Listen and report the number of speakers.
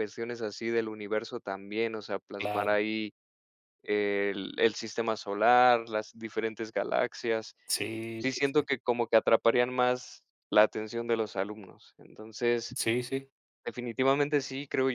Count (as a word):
two